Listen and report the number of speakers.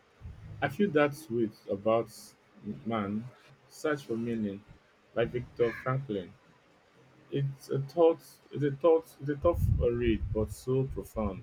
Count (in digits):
1